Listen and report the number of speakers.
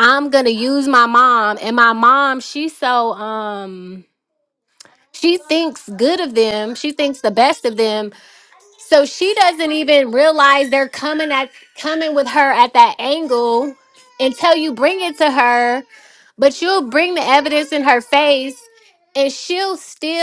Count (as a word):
one